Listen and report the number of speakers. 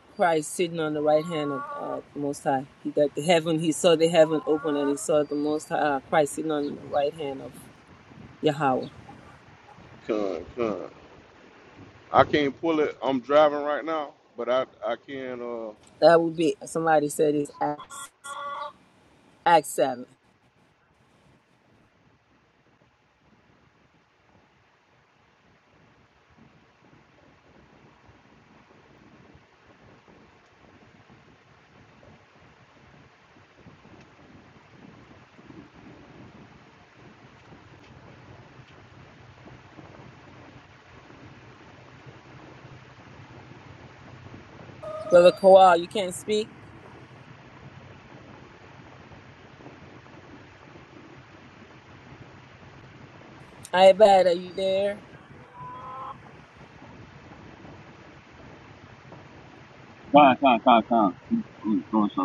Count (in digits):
3